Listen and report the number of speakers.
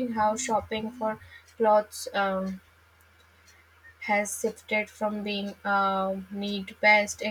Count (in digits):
1